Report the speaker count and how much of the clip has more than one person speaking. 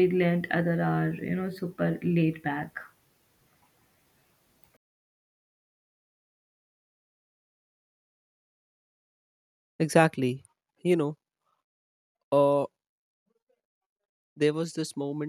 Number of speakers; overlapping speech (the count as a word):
two, no overlap